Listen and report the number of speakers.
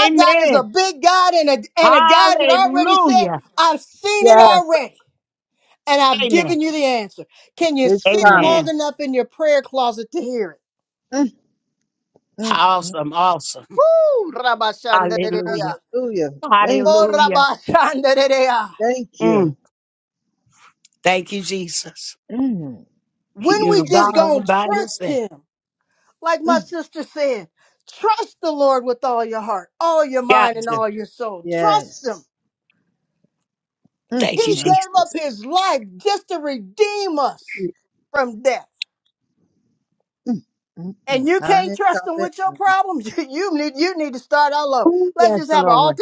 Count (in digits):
3